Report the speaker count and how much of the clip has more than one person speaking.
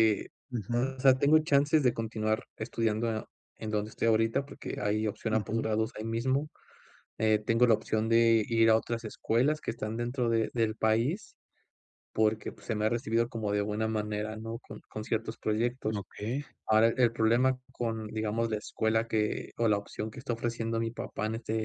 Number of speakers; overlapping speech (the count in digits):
2, about 3%